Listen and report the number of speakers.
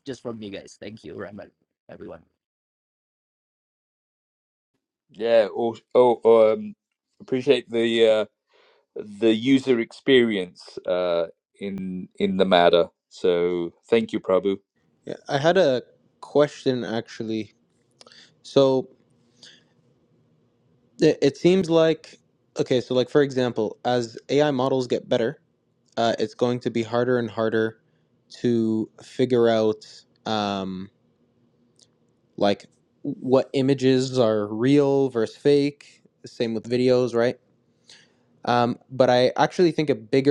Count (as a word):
three